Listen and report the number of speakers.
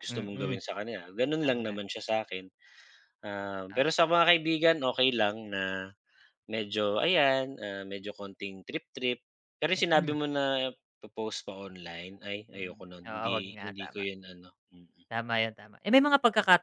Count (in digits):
2